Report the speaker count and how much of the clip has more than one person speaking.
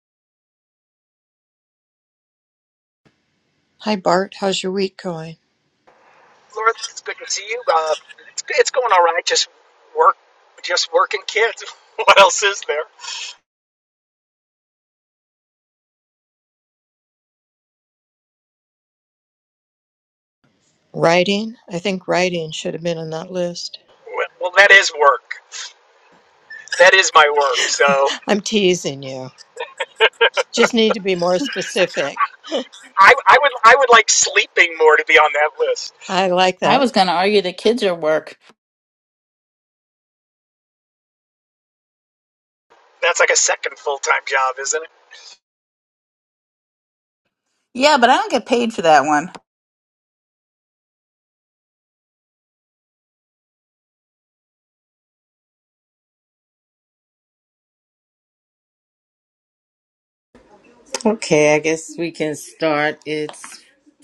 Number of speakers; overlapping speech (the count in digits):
4, under 1%